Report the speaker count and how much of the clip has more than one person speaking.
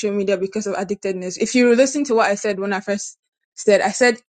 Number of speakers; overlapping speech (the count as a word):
one, no overlap